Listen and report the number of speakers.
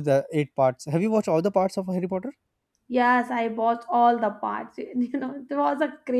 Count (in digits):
2